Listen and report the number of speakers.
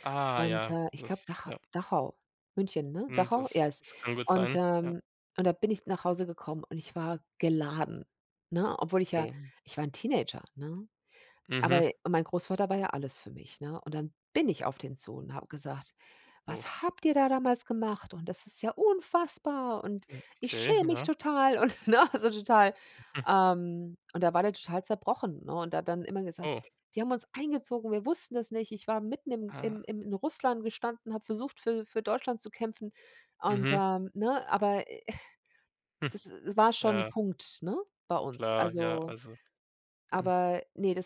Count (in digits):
2